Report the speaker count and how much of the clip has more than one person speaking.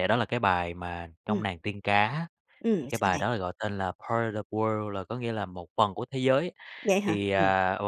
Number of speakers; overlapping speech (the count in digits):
2, about 13%